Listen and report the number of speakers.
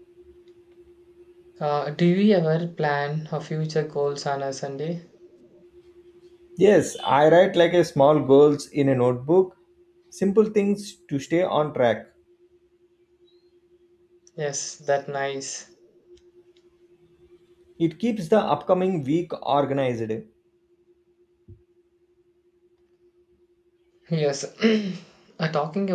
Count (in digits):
2